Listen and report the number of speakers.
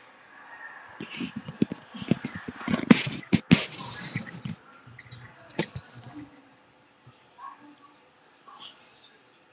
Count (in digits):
0